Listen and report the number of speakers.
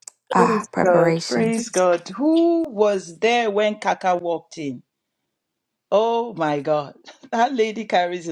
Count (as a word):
two